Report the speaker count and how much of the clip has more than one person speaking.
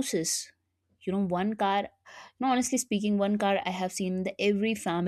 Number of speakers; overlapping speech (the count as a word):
one, no overlap